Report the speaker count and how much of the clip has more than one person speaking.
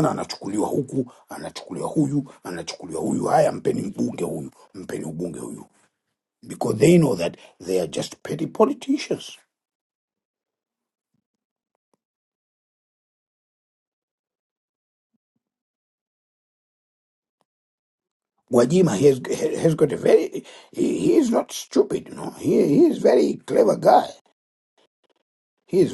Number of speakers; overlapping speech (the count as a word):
one, no overlap